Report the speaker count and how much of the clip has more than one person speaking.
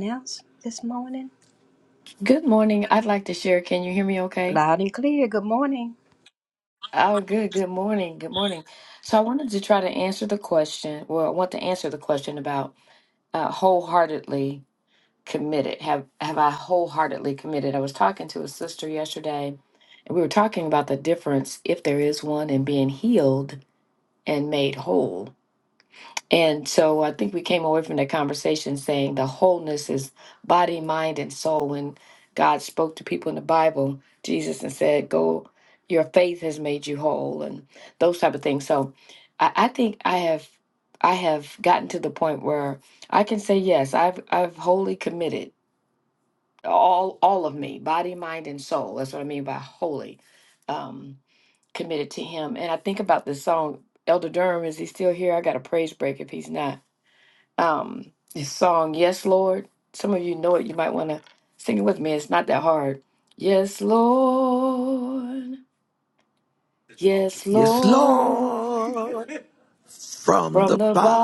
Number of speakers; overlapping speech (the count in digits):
3, about 2%